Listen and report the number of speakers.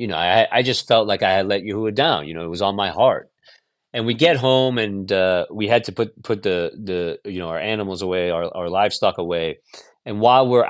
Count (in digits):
1